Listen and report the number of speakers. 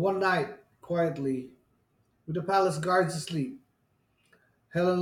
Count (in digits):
1